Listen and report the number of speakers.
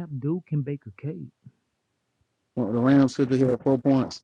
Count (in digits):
2